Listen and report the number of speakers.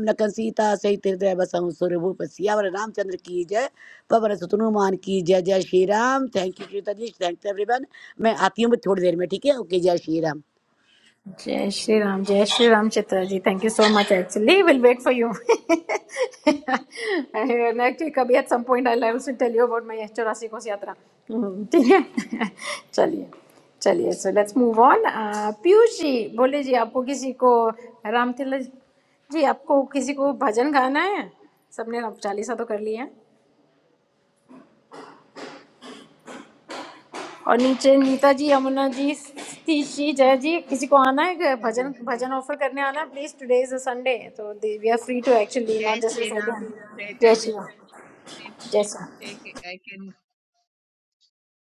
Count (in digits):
3